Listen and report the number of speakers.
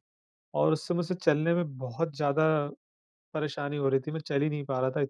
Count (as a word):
one